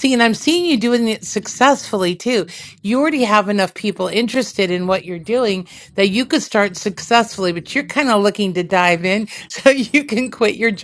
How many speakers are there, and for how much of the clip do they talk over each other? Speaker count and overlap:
1, no overlap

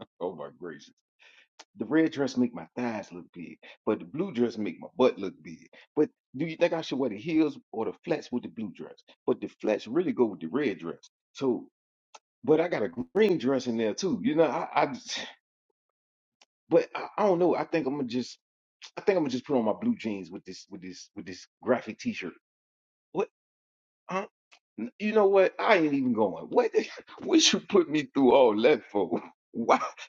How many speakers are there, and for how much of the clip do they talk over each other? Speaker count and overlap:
1, no overlap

